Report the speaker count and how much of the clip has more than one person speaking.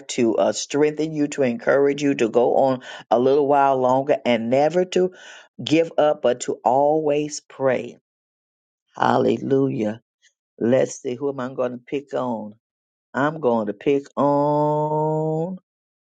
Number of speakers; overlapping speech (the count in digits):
1, no overlap